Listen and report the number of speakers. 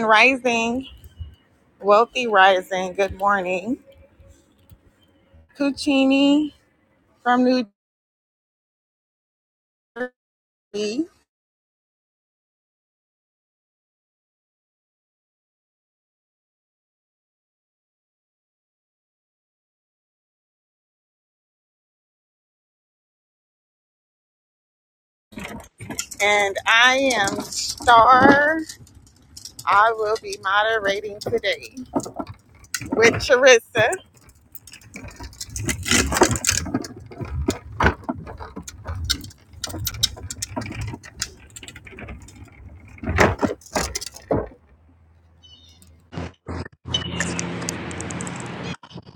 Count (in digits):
1